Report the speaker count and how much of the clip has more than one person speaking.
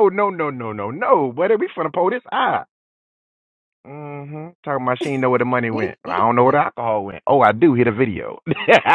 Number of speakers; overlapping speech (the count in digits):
1, no overlap